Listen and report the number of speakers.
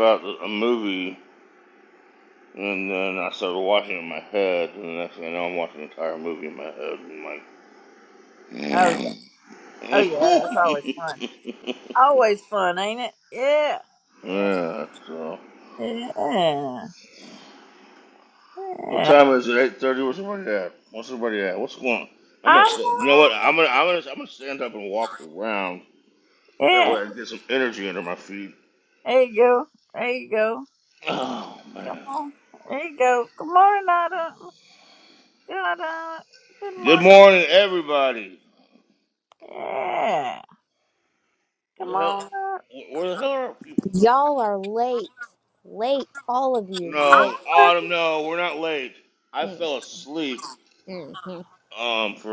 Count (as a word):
three